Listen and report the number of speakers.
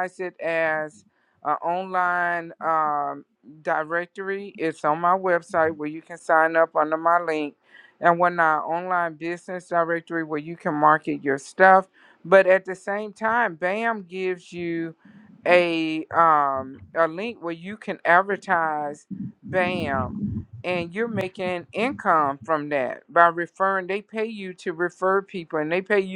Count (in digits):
1